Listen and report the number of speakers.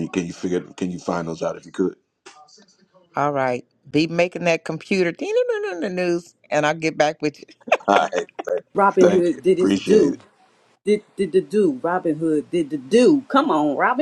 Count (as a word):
three